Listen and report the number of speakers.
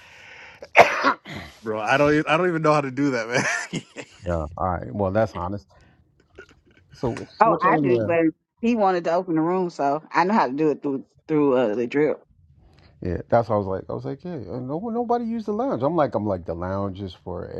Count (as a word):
three